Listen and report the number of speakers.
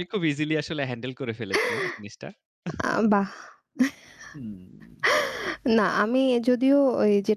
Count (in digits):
2